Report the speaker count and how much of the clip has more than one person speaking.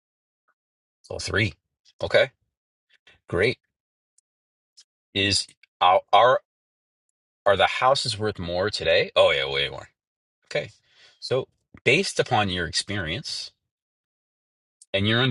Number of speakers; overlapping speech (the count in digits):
1, no overlap